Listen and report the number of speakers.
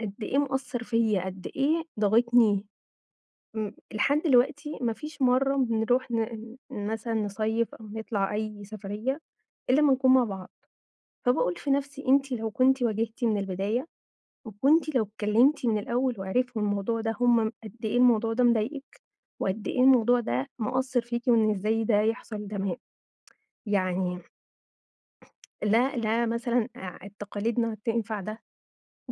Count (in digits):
1